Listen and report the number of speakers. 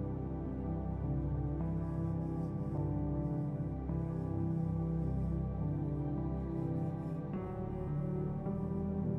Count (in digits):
0